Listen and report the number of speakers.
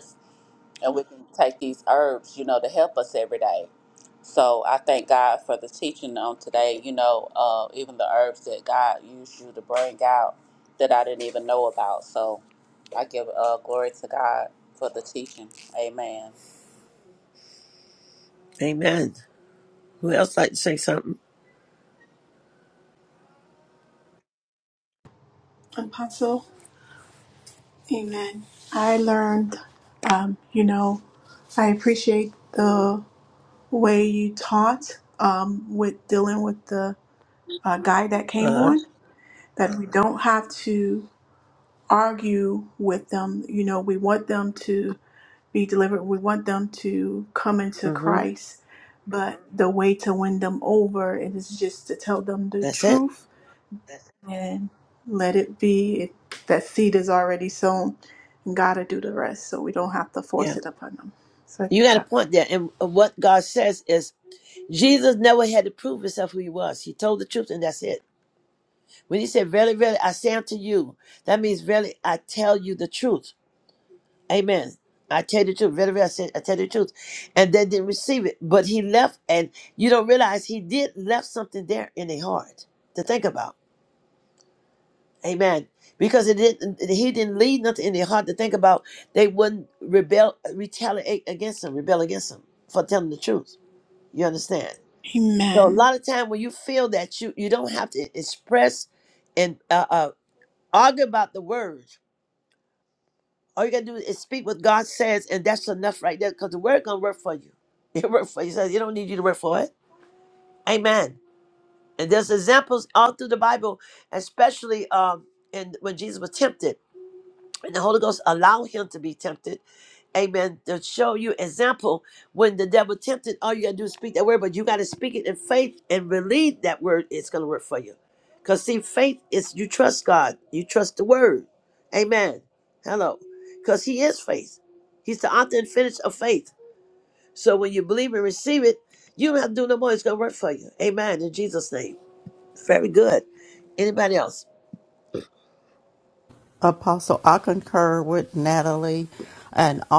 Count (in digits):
4